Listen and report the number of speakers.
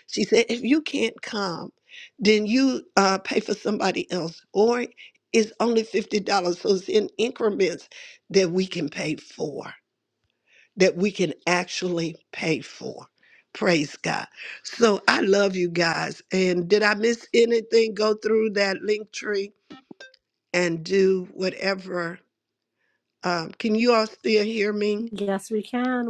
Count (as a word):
two